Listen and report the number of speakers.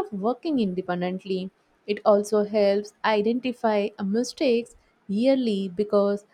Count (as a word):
one